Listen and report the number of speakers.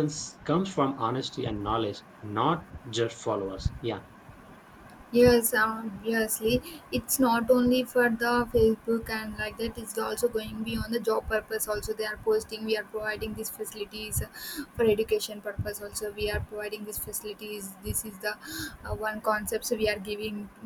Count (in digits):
2